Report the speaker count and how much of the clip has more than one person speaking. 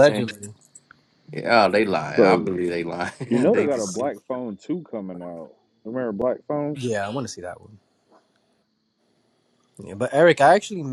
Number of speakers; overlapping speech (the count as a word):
three, about 11%